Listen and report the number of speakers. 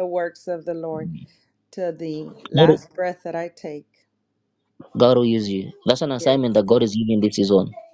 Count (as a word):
two